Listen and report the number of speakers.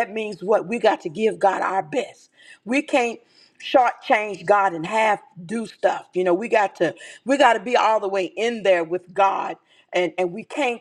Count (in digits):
1